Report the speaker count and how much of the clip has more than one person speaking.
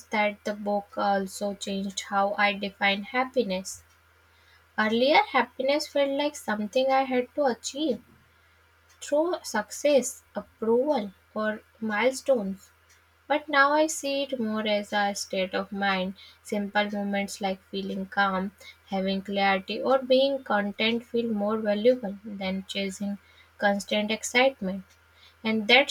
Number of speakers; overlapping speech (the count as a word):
one, no overlap